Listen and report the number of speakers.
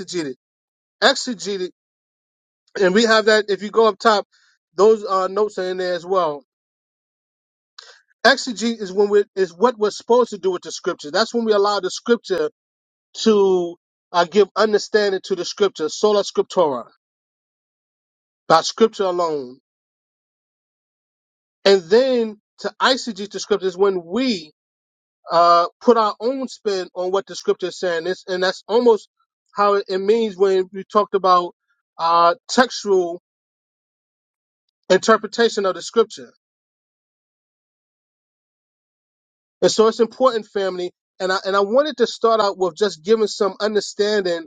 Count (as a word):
one